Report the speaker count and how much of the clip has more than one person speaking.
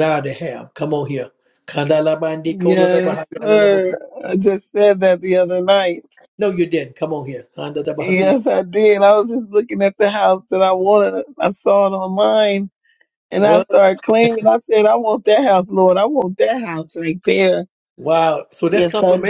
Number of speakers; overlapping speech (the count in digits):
2, about 5%